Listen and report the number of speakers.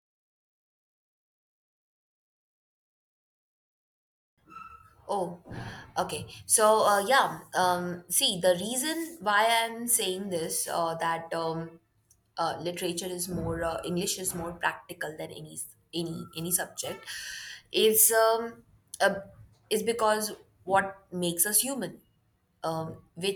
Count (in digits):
1